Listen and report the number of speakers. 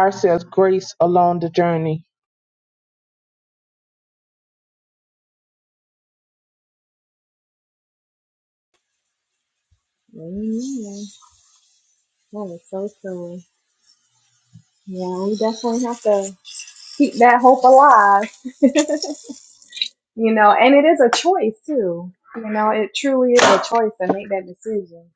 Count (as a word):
two